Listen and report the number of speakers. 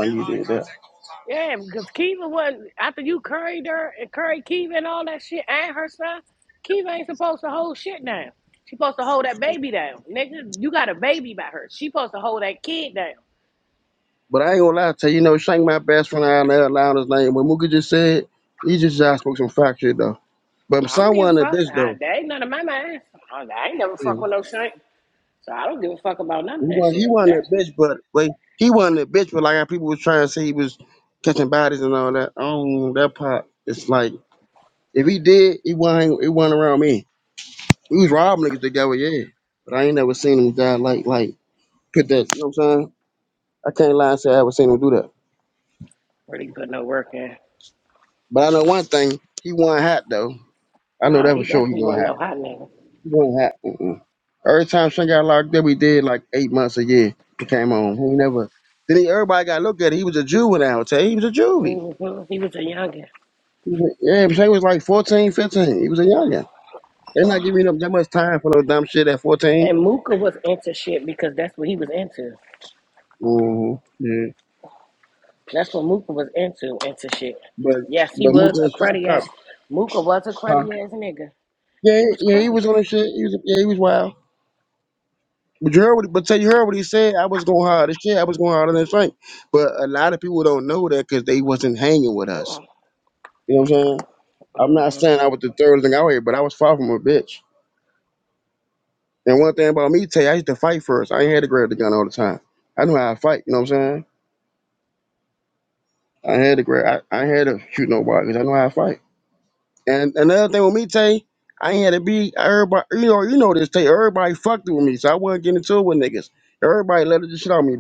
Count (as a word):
two